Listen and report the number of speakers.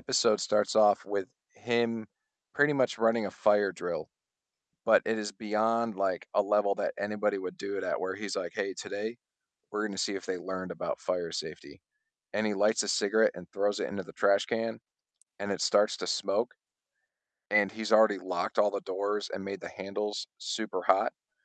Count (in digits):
1